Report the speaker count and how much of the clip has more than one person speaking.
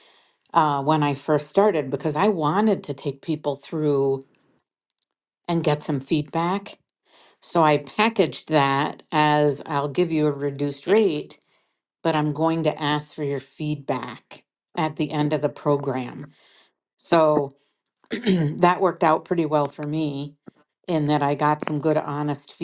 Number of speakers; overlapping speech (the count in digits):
1, no overlap